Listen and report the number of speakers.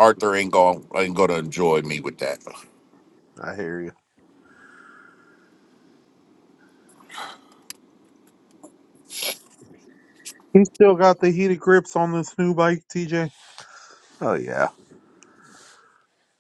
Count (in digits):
3